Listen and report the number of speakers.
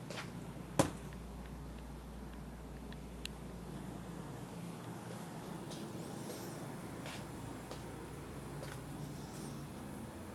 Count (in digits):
0